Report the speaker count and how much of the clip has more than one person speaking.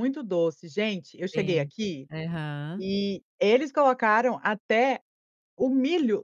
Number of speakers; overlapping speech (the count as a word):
two, about 5%